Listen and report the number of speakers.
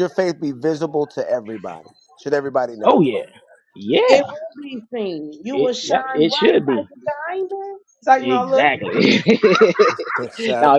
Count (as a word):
three